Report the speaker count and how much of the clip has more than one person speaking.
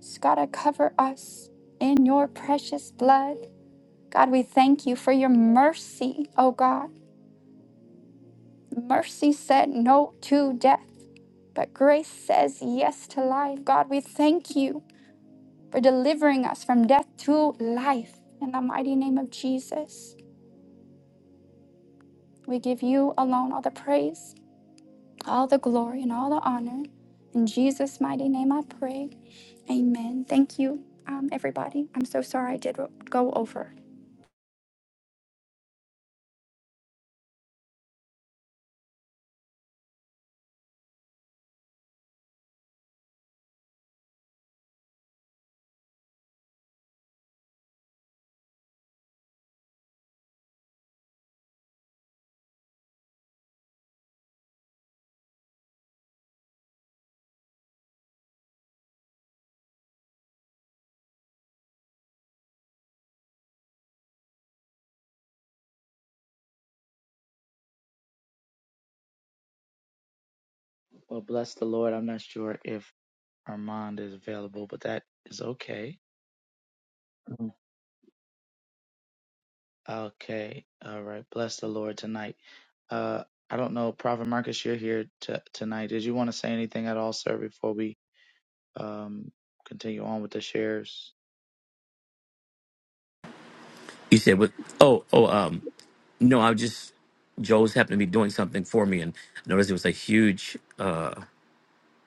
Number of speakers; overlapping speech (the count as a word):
three, no overlap